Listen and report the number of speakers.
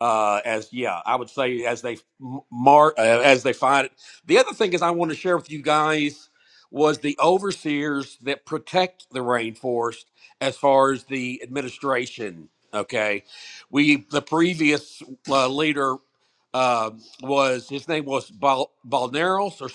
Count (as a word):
one